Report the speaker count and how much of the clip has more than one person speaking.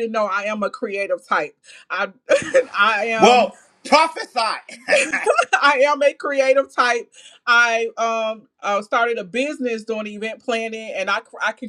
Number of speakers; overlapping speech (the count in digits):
2, about 2%